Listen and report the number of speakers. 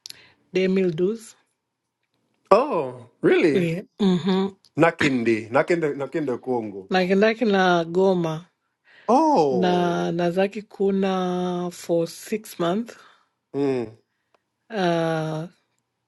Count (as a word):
two